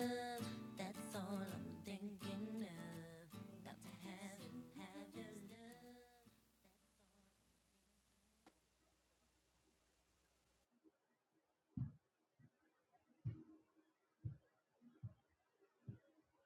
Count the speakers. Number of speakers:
0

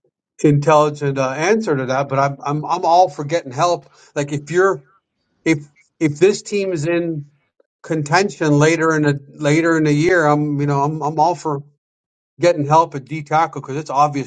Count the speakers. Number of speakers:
1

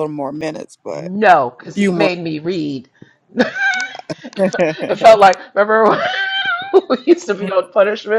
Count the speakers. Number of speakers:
2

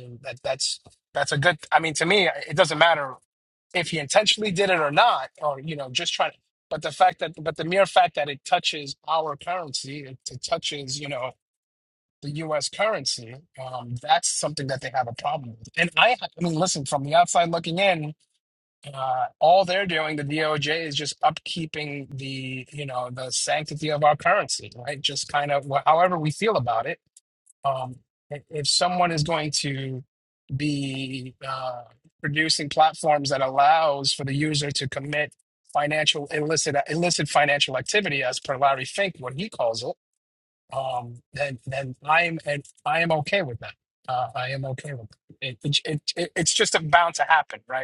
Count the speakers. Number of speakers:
1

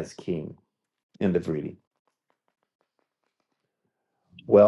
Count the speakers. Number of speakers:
1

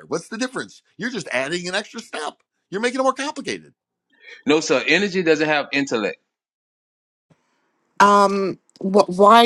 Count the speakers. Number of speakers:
3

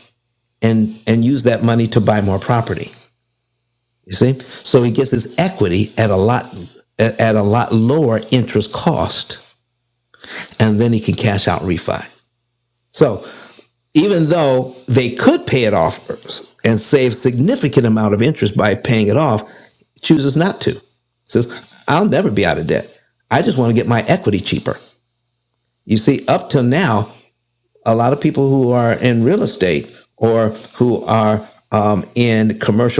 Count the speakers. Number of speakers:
1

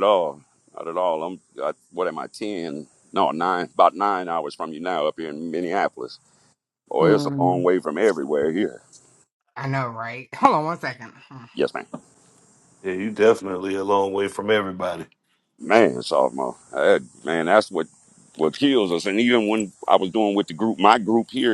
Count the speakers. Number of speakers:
3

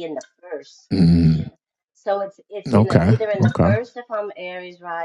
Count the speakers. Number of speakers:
2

